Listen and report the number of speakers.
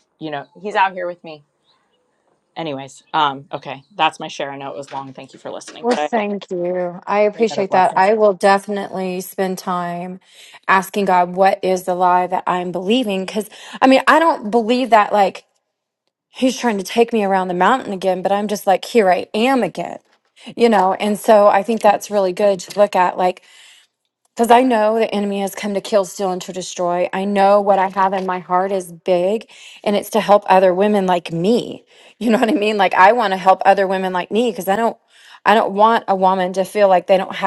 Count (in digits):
2